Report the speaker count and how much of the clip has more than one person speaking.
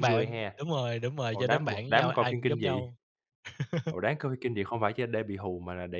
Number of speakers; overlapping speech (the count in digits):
2, about 34%